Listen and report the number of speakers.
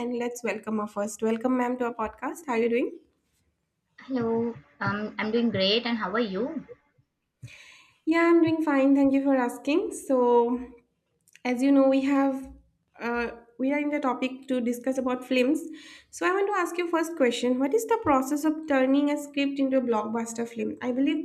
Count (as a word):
two